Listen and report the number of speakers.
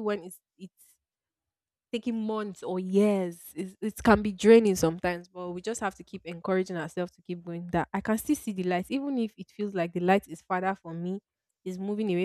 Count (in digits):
1